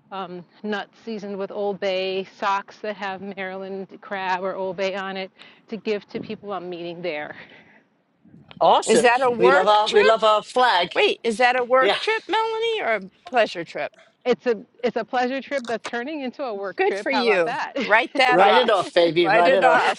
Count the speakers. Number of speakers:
three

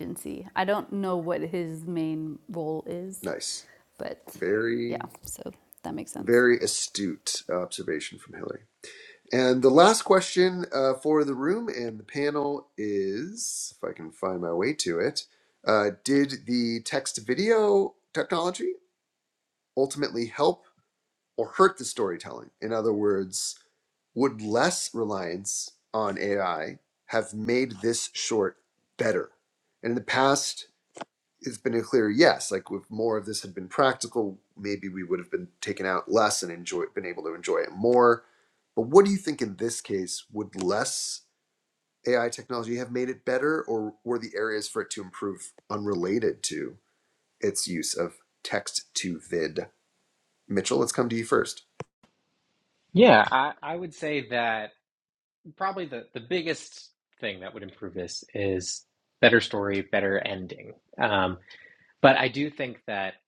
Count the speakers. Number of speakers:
three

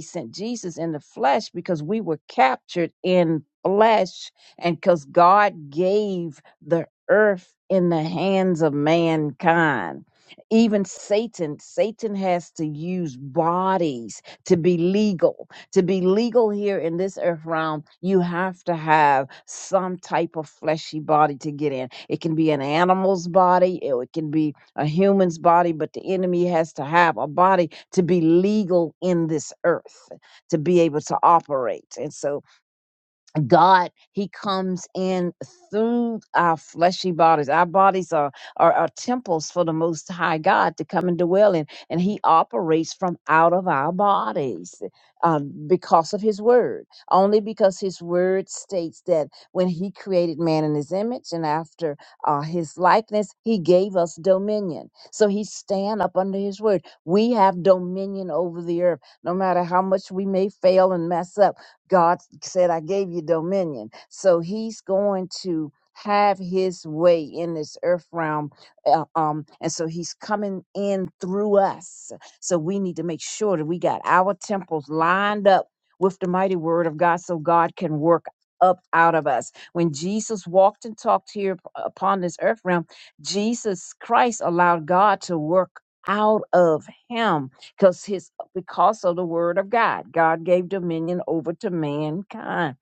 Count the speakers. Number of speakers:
one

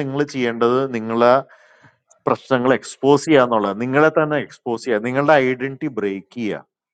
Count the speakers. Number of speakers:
one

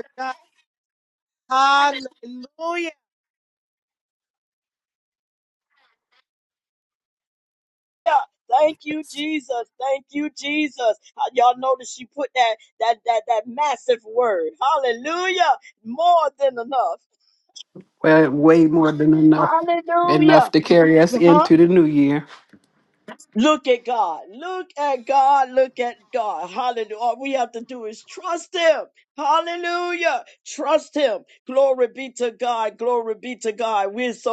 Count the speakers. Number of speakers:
three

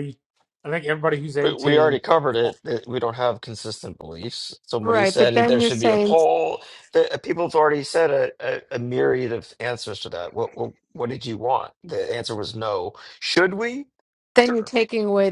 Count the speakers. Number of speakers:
three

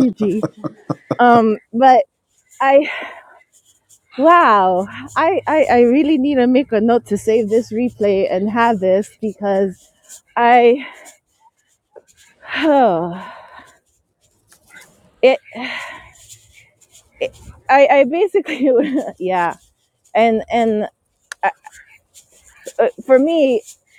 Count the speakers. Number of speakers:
one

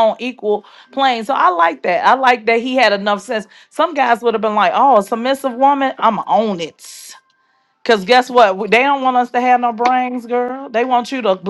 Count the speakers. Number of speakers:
one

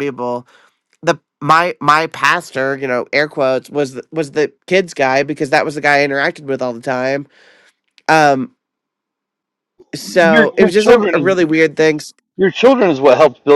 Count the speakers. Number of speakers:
two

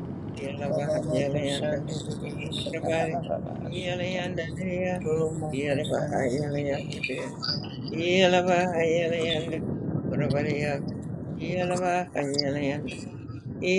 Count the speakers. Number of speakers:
two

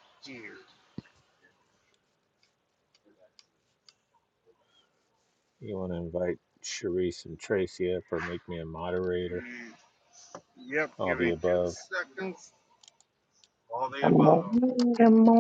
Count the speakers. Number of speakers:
three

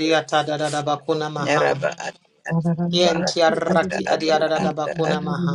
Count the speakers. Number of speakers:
two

